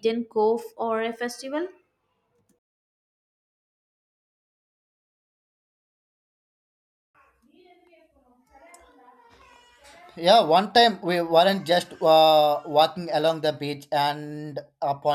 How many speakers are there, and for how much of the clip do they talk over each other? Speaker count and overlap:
two, no overlap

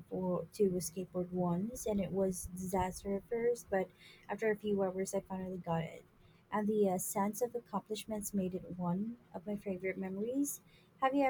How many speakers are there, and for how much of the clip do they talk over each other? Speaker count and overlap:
one, no overlap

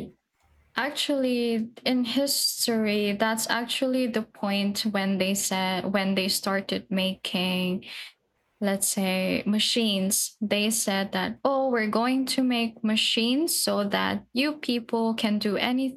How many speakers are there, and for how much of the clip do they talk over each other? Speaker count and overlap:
one, no overlap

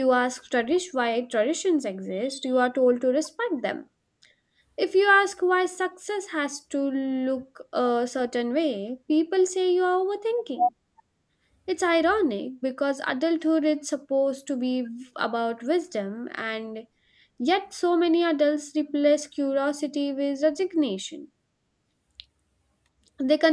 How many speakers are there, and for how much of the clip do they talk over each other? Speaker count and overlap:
one, no overlap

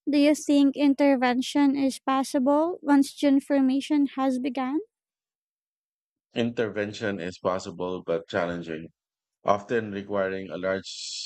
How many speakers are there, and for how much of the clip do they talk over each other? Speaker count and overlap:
two, no overlap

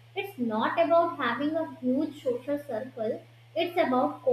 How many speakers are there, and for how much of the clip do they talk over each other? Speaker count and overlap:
one, no overlap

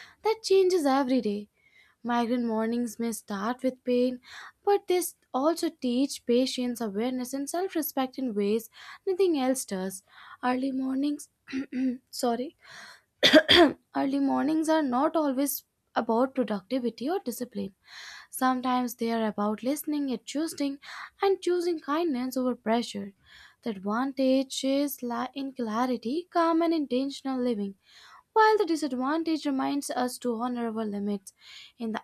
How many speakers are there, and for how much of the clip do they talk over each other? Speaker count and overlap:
one, no overlap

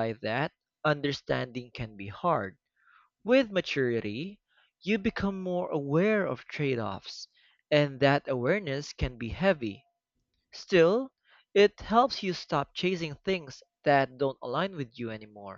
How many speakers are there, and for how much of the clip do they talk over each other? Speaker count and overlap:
one, no overlap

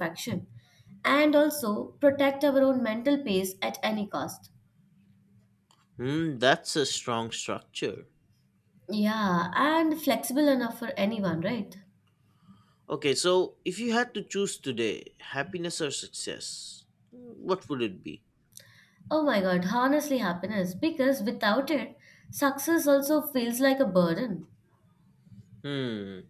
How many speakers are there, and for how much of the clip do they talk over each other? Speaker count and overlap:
two, no overlap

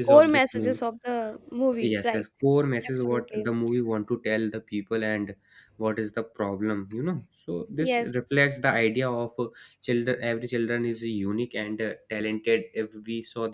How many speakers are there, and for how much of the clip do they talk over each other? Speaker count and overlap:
two, about 16%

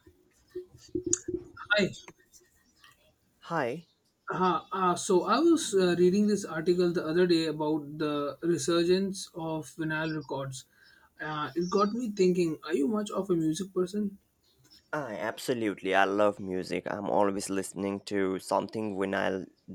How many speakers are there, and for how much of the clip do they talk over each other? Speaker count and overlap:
two, no overlap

